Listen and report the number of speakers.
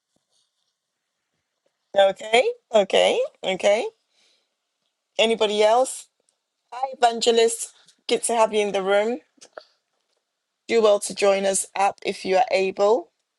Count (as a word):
one